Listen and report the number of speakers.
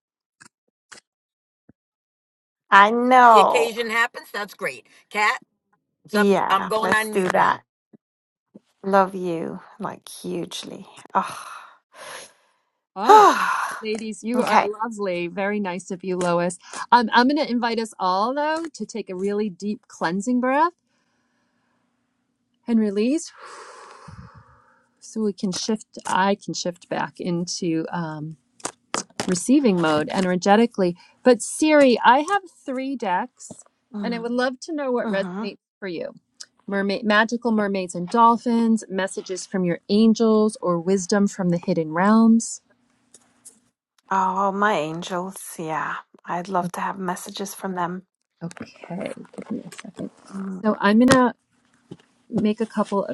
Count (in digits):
3